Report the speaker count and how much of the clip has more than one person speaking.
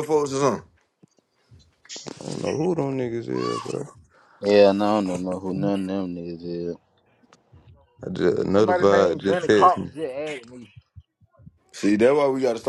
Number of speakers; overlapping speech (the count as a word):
four, about 11%